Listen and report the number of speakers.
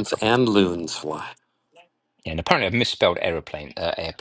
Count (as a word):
two